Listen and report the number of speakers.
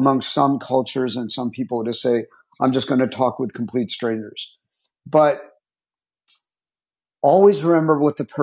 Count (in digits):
1